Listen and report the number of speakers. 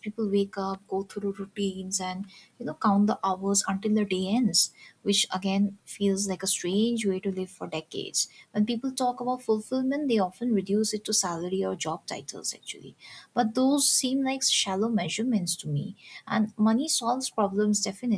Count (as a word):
one